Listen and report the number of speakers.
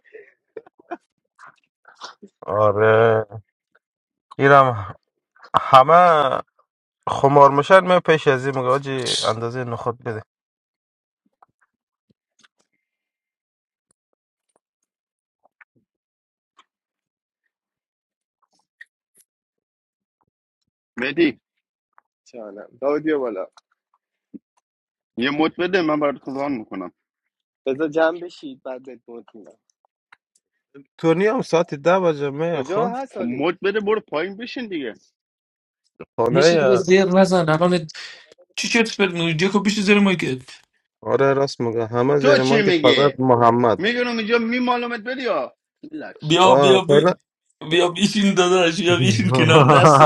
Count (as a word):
four